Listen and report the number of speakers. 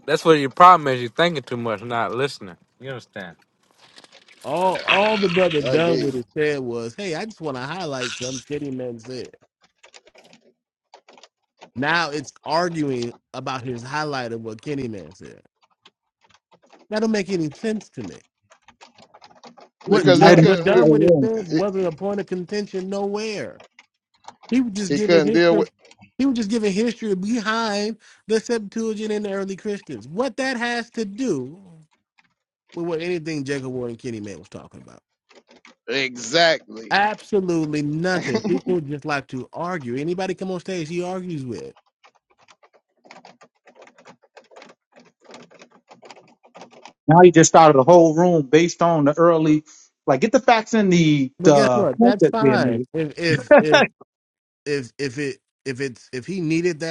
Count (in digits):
4